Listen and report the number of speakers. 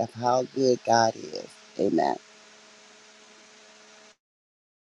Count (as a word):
one